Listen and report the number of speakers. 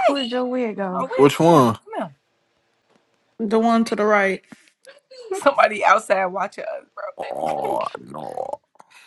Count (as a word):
four